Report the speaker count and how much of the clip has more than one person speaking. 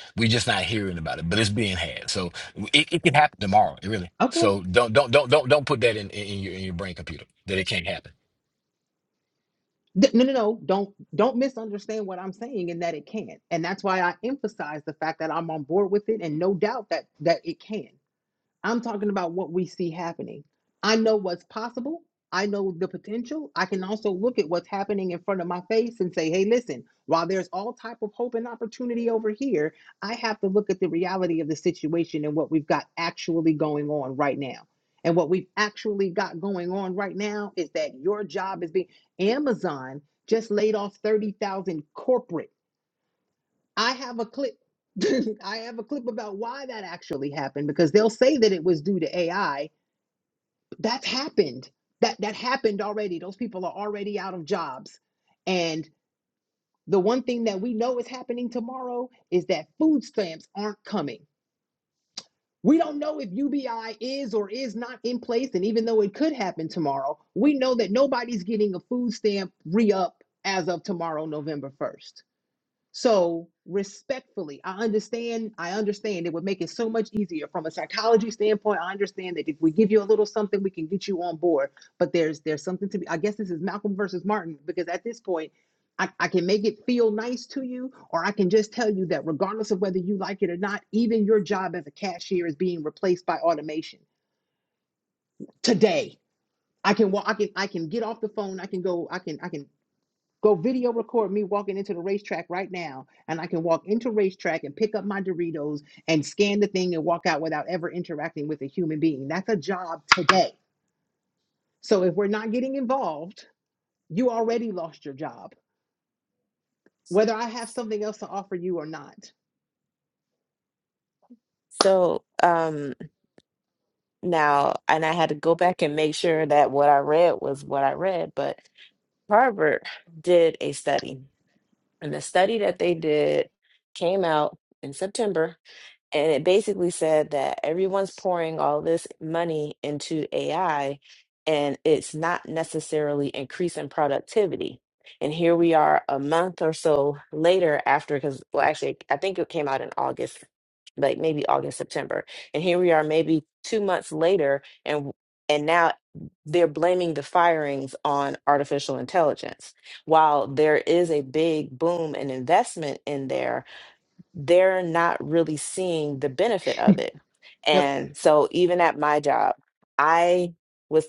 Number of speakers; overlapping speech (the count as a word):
three, under 1%